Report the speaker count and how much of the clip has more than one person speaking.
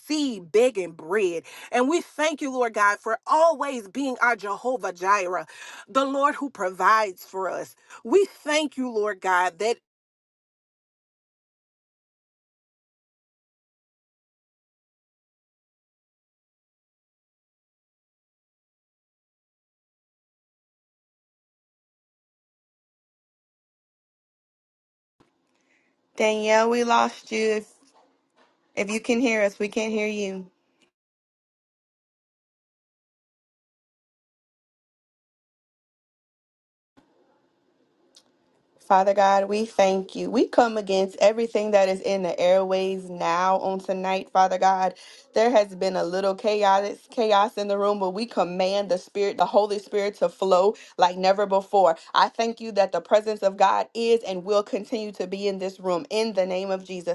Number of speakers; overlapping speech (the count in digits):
2, no overlap